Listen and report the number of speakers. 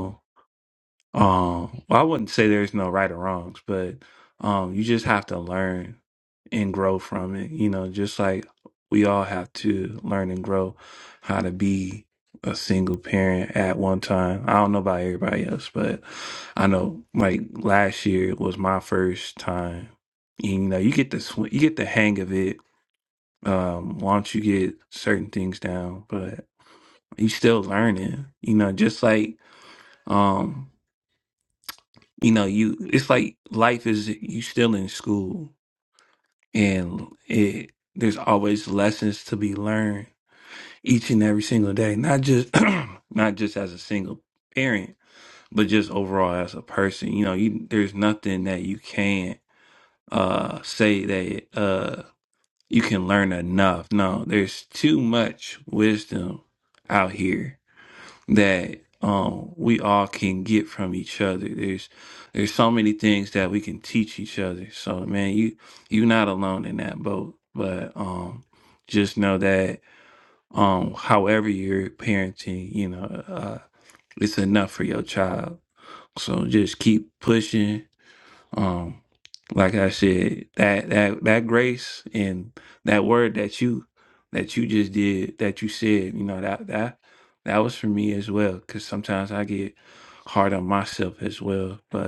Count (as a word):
one